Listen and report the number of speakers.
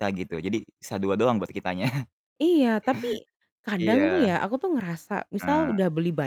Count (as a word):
two